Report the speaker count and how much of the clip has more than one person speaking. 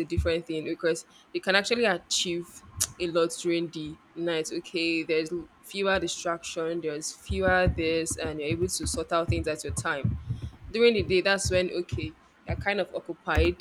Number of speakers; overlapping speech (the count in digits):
1, no overlap